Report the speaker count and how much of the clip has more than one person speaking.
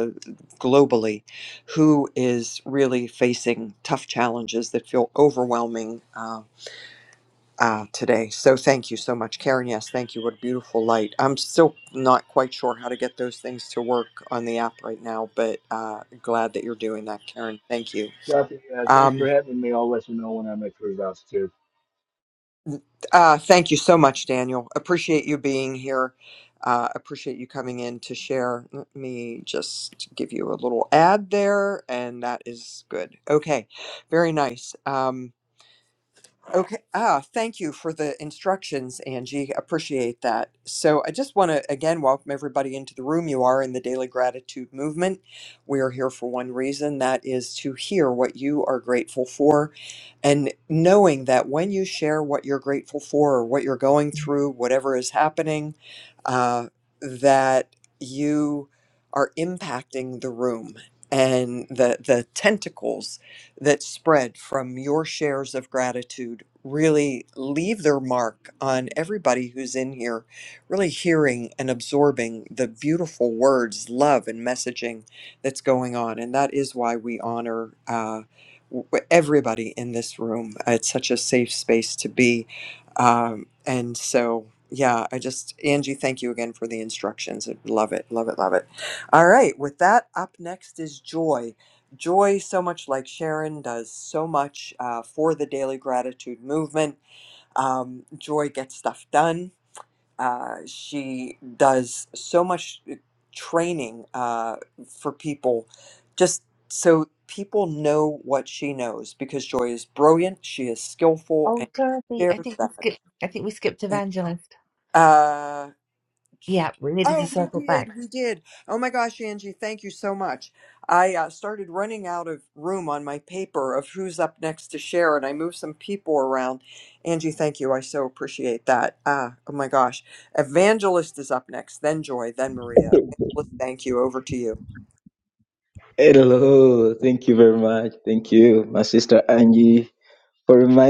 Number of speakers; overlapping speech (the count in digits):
4, about 2%